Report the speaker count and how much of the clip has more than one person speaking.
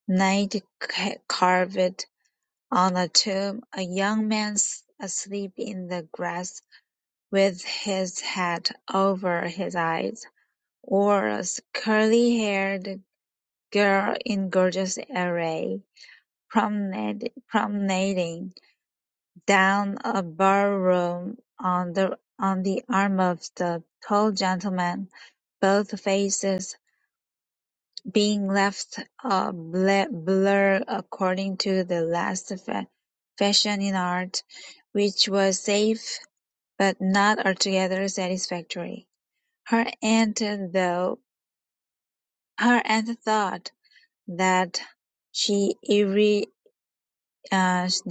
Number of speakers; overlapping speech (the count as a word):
one, no overlap